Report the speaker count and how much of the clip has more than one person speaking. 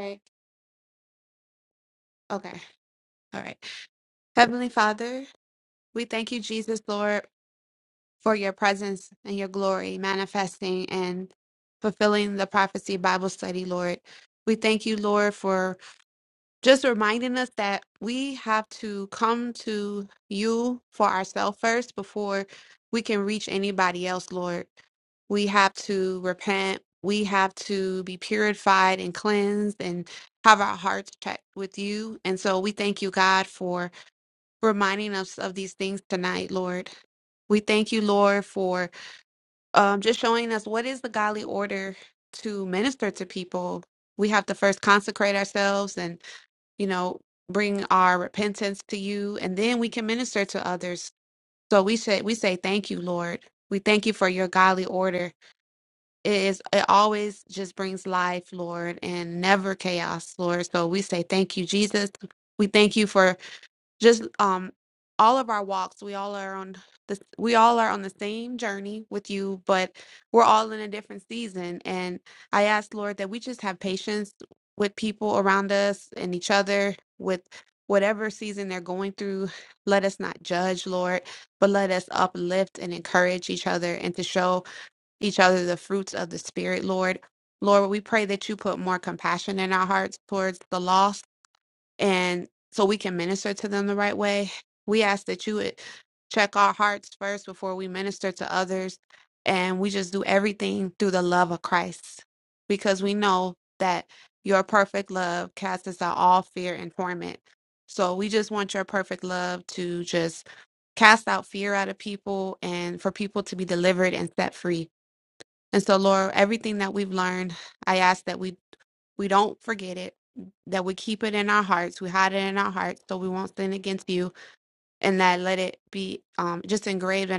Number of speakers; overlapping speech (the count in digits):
1, no overlap